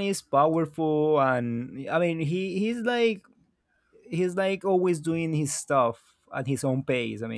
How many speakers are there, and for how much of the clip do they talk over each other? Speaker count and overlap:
1, no overlap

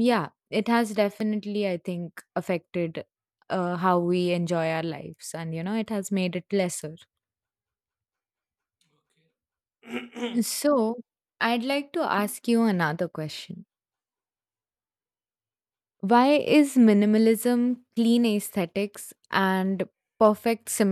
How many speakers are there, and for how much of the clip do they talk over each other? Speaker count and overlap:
1, no overlap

